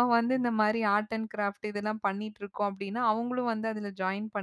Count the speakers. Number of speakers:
1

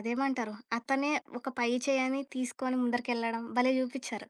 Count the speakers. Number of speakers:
1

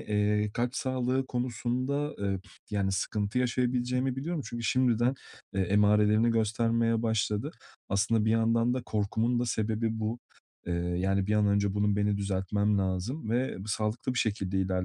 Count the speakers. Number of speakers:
1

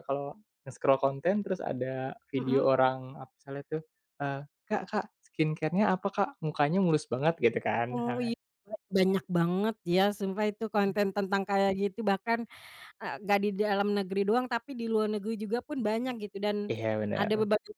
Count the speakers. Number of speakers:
2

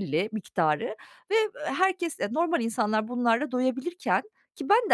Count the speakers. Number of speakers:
1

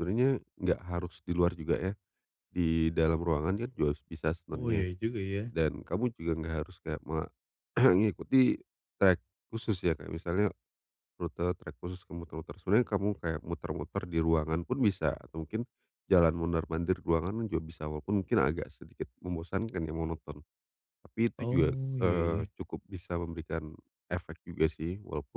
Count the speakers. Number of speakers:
2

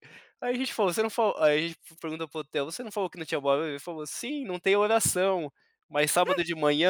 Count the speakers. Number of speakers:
1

